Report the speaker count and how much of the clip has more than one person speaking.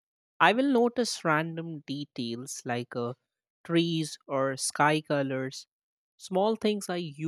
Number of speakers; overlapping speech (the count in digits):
1, no overlap